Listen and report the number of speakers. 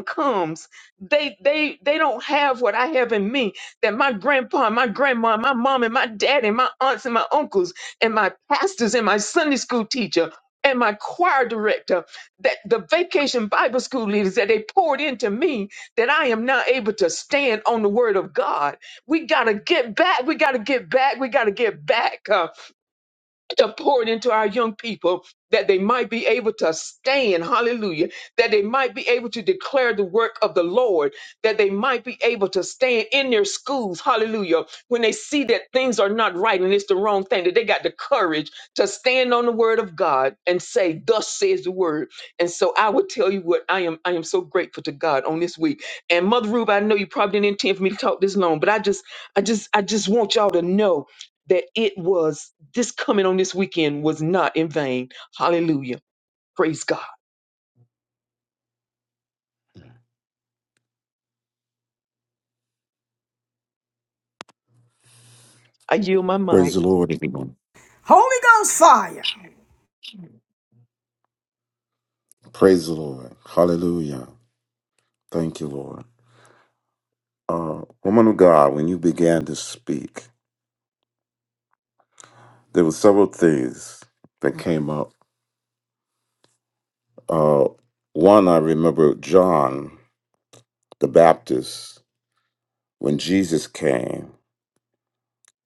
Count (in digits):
3